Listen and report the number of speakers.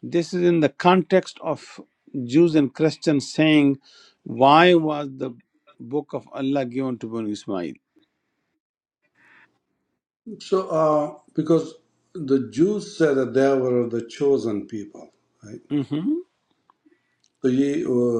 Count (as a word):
two